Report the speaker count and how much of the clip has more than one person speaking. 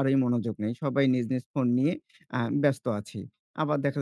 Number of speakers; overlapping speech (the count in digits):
1, no overlap